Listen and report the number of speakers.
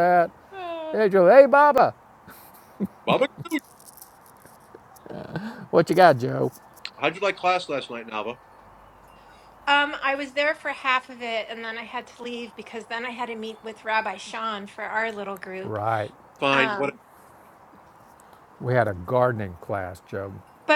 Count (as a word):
three